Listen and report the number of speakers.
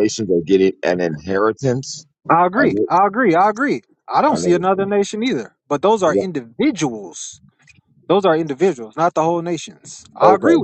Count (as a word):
two